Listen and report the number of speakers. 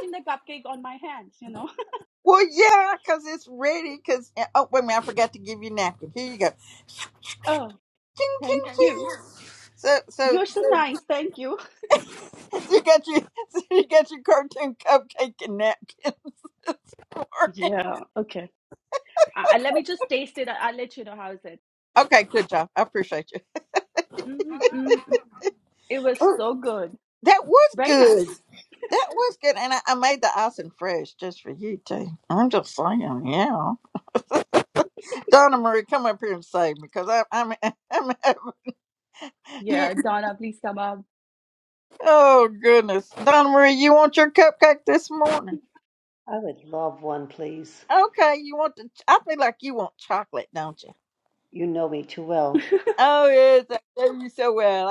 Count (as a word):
three